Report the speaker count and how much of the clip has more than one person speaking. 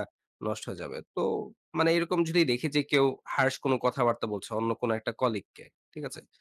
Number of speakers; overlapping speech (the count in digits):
1, no overlap